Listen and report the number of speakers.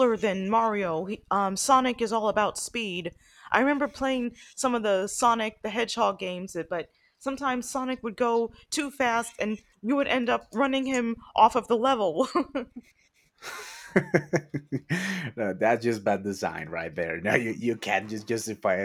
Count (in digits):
2